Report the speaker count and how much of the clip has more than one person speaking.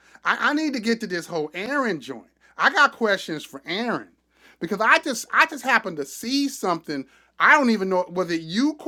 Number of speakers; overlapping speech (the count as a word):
one, no overlap